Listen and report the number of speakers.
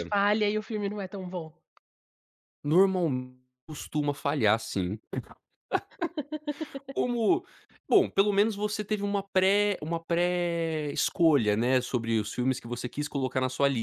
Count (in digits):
2